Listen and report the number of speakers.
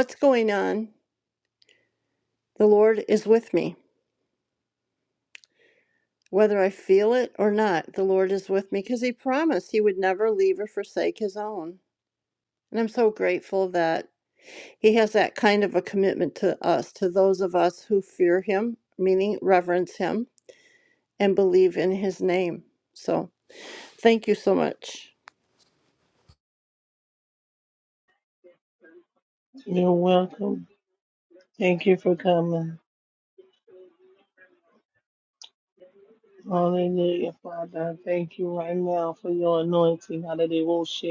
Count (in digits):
2